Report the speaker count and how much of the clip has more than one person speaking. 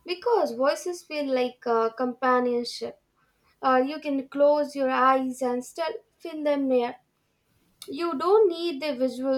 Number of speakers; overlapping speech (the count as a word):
one, no overlap